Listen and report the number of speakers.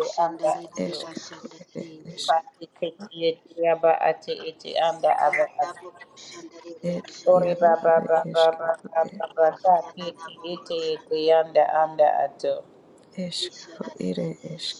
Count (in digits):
3